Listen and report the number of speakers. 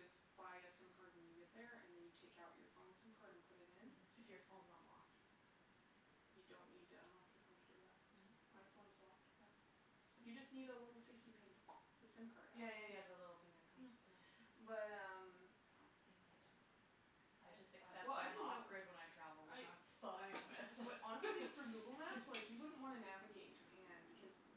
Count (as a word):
two